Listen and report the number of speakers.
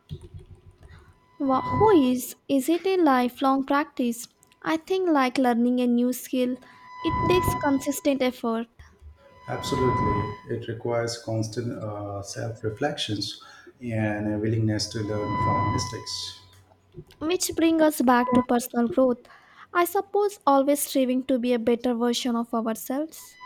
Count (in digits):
2